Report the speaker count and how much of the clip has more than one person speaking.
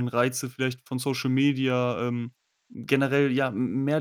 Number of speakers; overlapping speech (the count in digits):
1, no overlap